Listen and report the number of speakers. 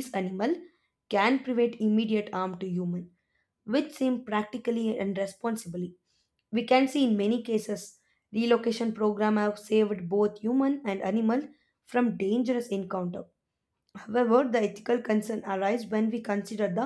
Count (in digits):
1